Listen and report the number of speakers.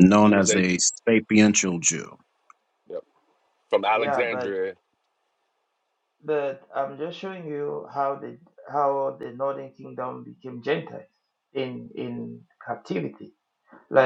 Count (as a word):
three